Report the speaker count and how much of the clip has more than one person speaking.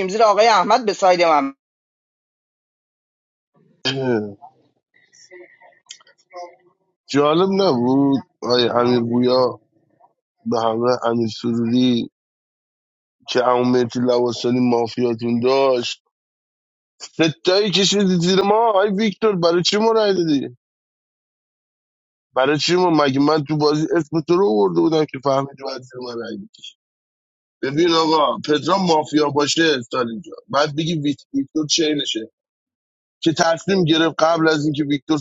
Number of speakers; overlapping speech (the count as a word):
two, no overlap